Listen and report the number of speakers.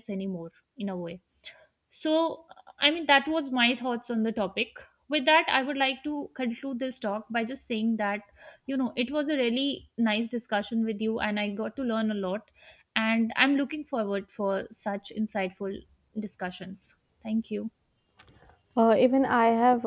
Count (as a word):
two